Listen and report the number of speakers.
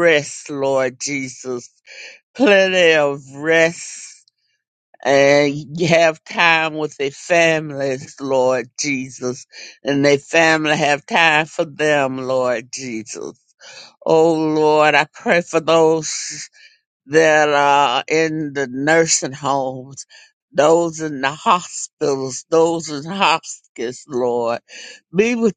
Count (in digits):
1